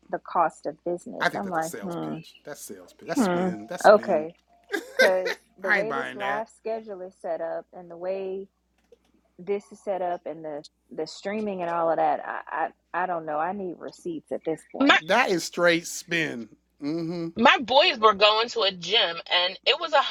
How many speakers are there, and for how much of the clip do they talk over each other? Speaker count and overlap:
3, about 16%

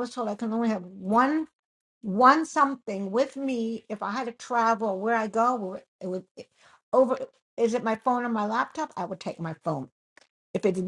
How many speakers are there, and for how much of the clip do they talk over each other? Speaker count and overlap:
1, no overlap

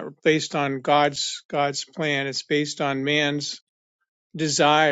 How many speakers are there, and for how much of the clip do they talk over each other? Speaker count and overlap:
1, no overlap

